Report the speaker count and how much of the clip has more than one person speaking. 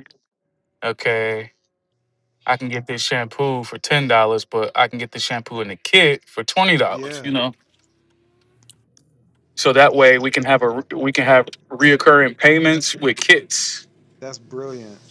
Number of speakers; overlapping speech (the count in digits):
2, about 3%